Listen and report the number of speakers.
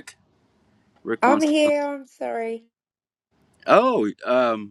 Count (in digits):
2